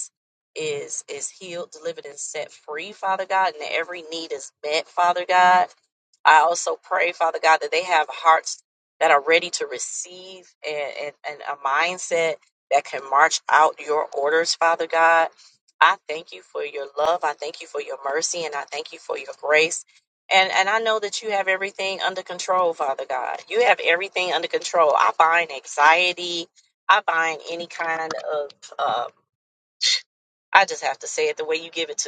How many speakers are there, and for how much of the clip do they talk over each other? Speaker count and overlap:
1, no overlap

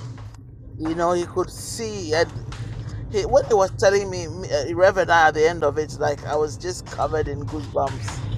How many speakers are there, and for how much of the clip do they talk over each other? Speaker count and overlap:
1, no overlap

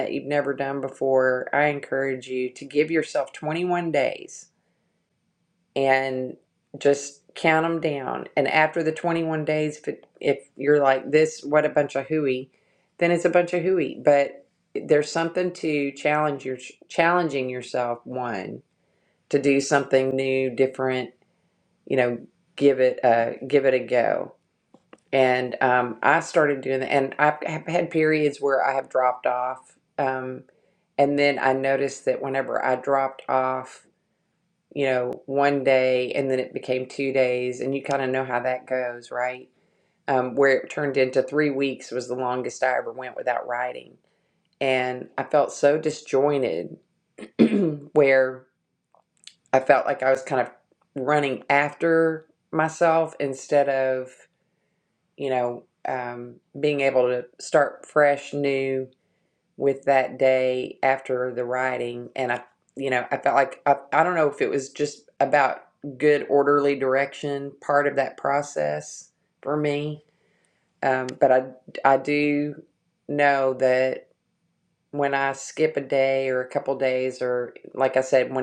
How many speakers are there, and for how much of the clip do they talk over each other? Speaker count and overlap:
1, no overlap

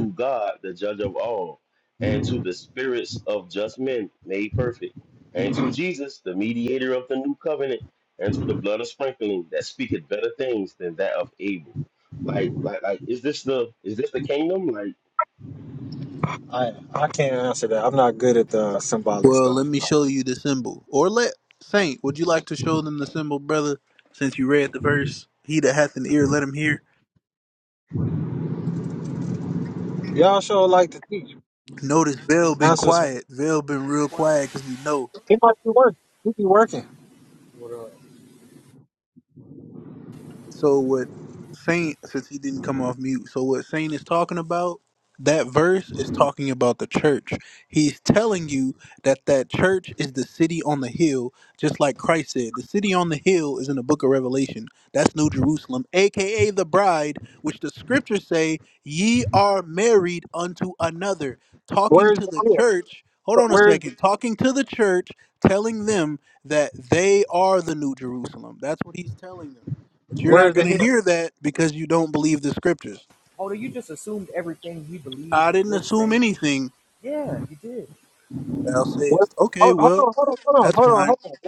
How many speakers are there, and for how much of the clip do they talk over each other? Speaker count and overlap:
4, about 6%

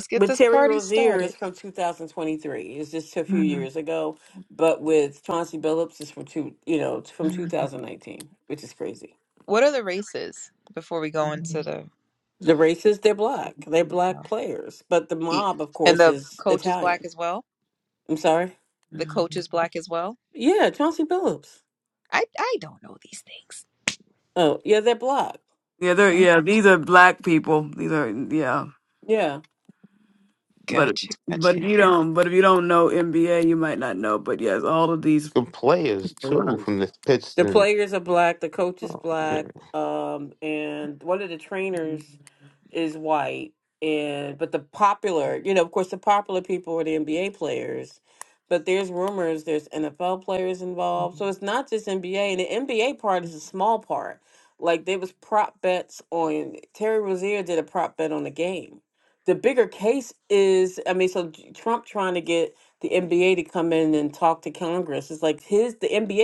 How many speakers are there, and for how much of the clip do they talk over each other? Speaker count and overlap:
4, about 7%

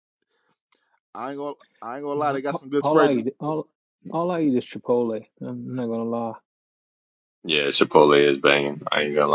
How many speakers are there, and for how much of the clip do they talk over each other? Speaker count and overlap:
3, about 10%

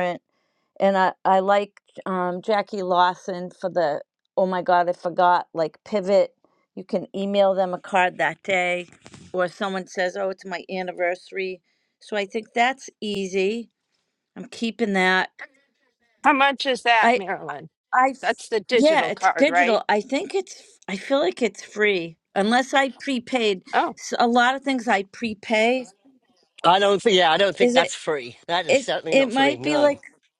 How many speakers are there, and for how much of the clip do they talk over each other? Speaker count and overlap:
3, about 9%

